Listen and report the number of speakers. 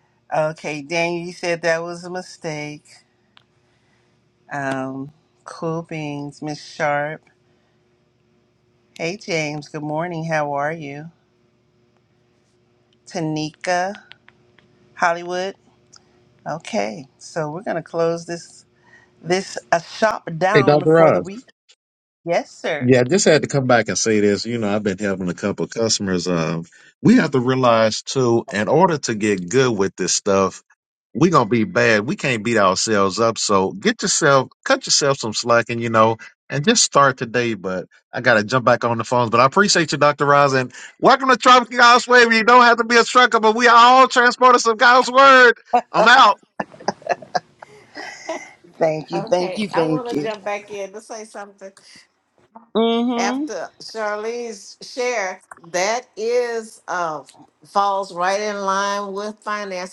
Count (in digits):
3